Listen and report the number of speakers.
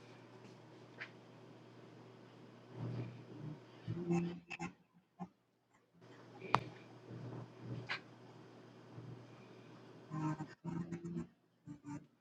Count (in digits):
0